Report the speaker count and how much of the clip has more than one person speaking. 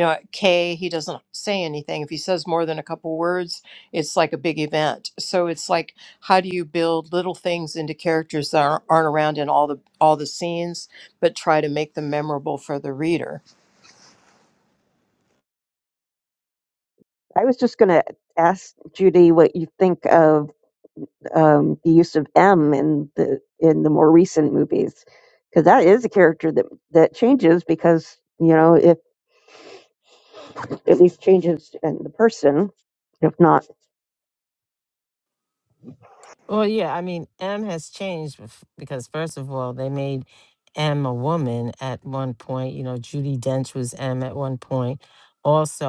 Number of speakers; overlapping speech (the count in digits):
3, no overlap